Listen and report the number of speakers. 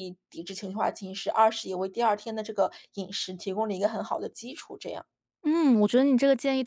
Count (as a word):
two